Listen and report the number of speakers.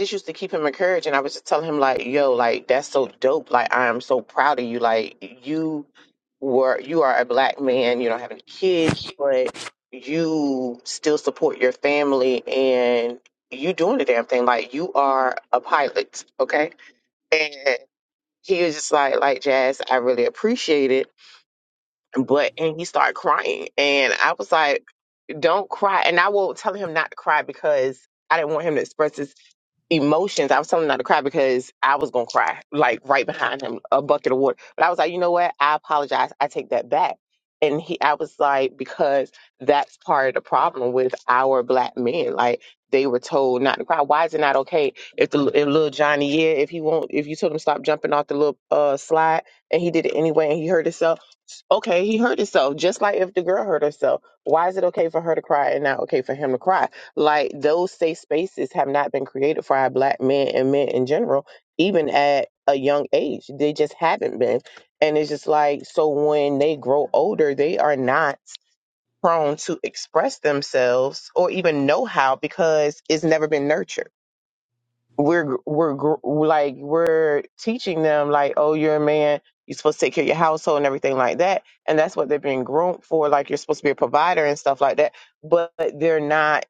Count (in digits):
1